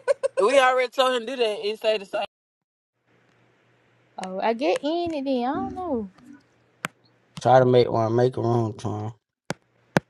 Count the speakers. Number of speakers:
3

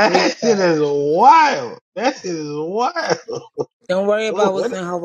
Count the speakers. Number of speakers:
2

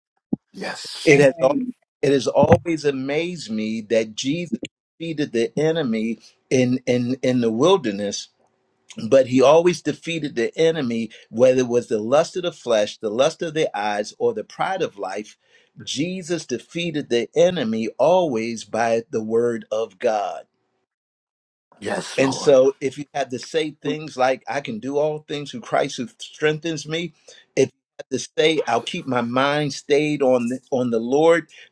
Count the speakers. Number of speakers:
2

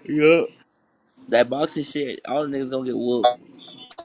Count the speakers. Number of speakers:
1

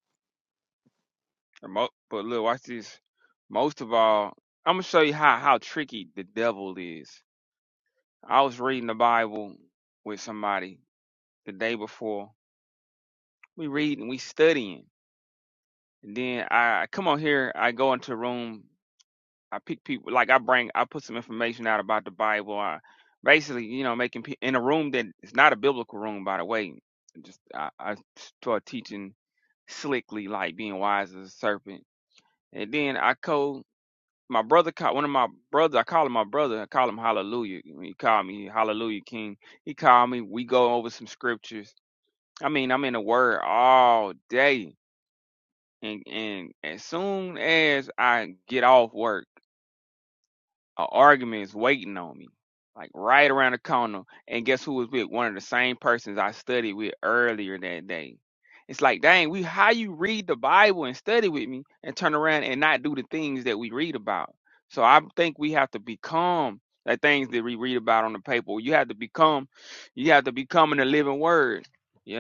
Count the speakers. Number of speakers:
1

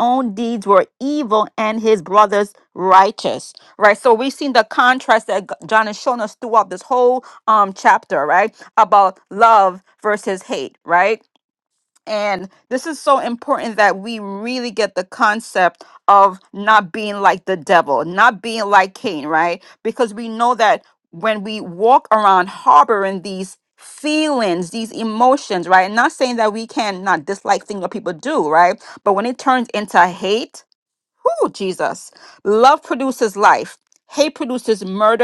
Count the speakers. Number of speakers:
1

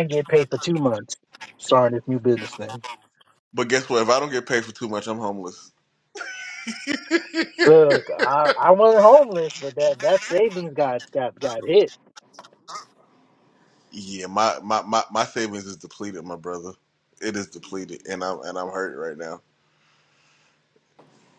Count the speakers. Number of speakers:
2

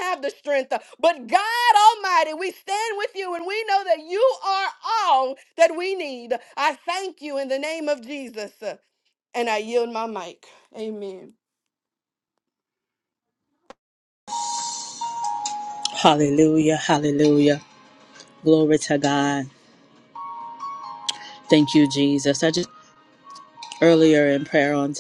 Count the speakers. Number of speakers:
2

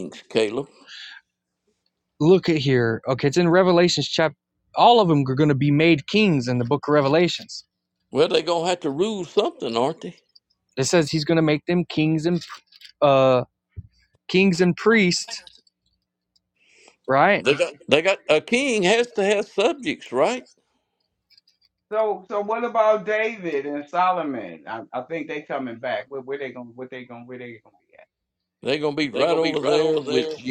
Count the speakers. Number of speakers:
3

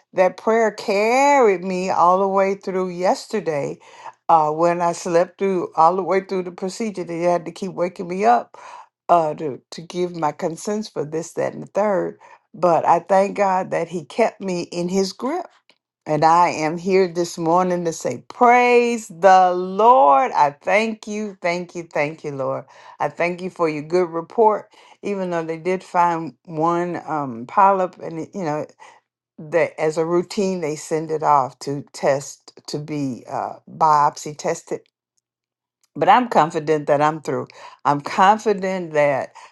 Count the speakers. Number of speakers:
1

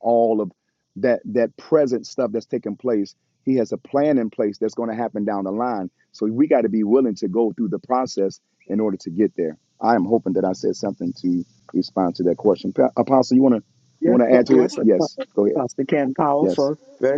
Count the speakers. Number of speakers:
2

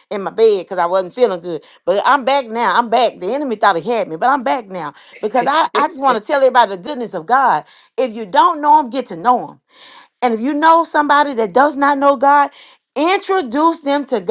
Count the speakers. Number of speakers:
1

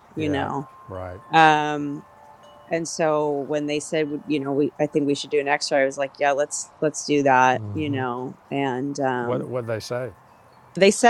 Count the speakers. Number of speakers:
2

